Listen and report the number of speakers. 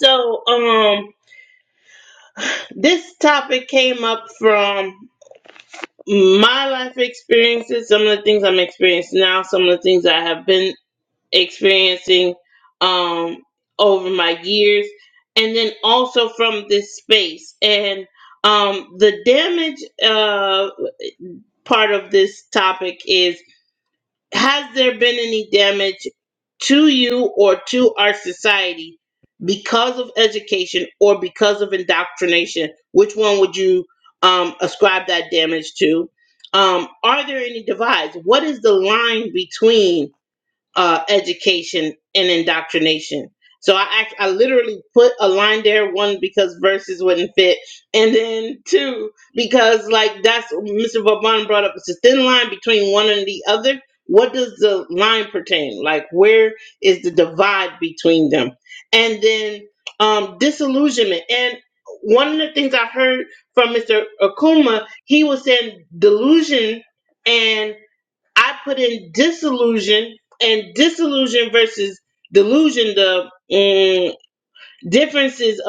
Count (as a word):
one